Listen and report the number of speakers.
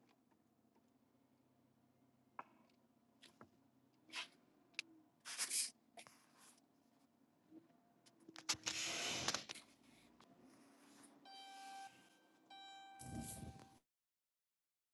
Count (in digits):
0